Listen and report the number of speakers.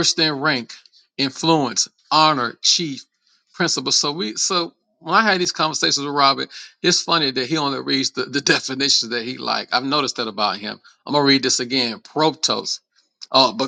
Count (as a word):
one